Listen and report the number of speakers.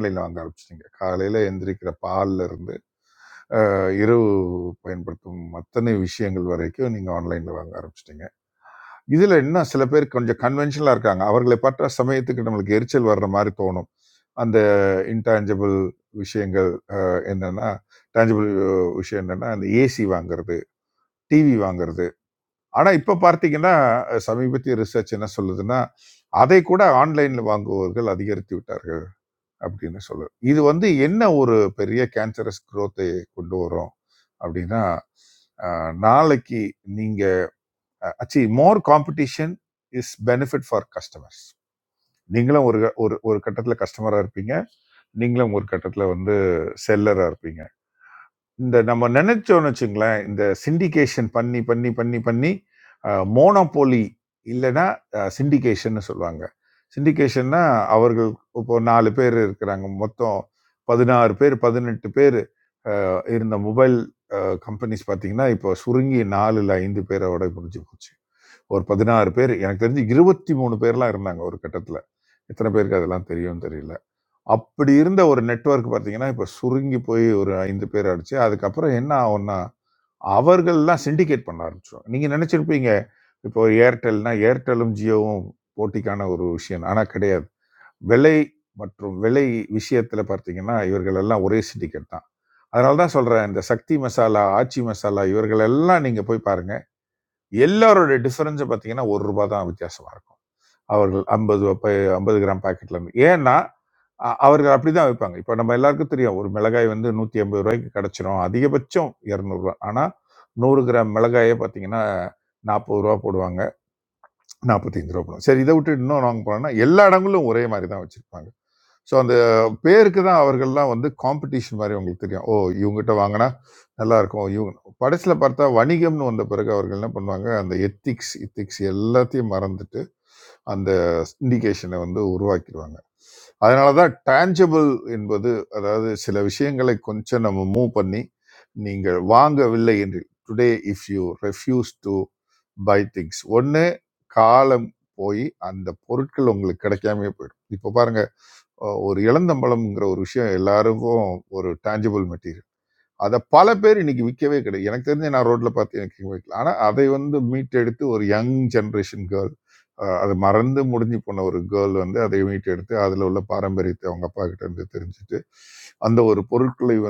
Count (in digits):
1